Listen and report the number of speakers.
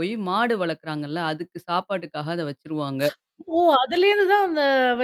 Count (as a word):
two